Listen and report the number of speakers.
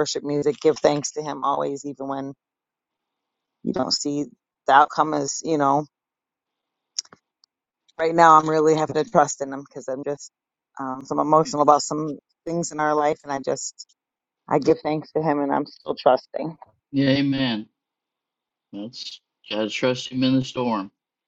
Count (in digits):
2